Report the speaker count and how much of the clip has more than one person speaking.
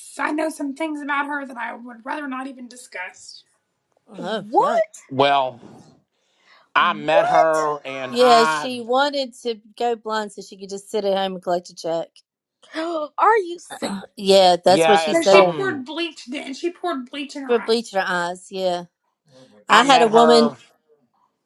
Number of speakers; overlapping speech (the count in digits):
4, about 19%